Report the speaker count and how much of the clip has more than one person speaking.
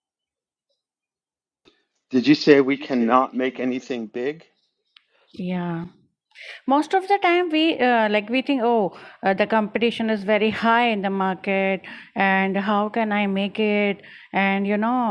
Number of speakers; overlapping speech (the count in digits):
2, no overlap